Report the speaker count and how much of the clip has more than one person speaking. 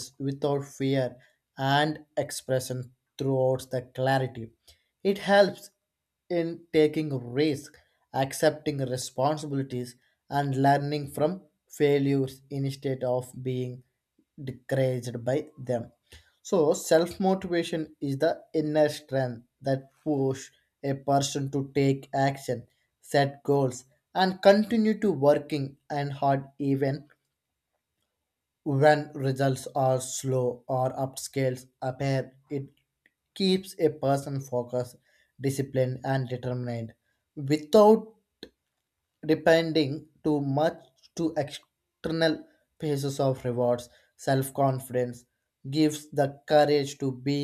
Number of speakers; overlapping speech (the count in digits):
1, no overlap